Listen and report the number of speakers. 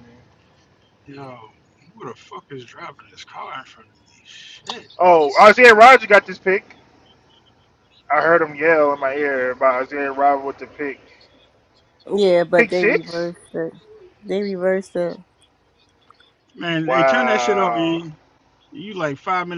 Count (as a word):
three